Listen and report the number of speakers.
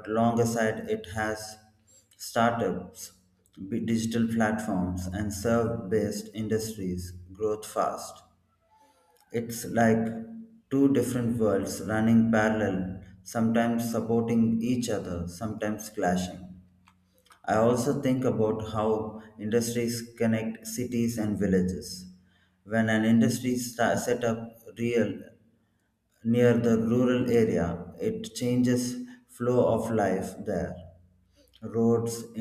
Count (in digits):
1